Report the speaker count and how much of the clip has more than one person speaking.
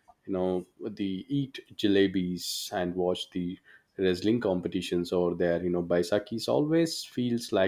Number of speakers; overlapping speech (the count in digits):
1, no overlap